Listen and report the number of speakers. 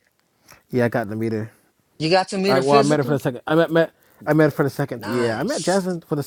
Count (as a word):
two